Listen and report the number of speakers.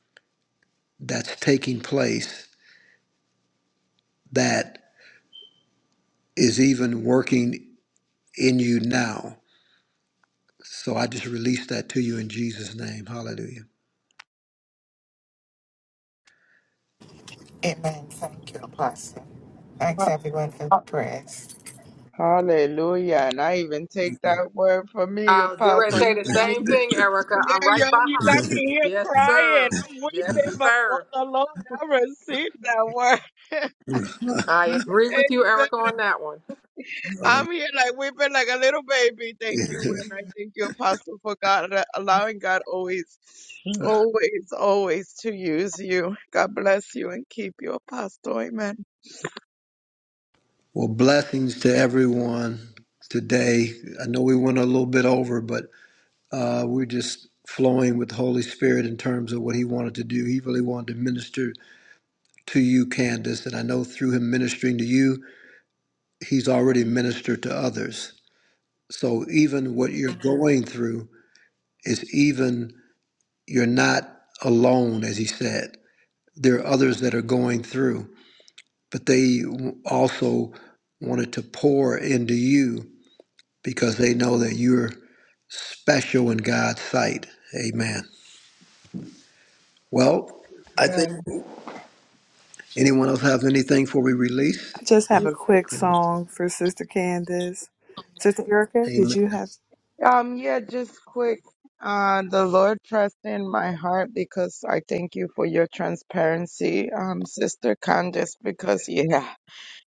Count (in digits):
5